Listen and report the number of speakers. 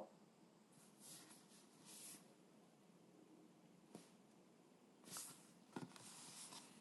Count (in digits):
0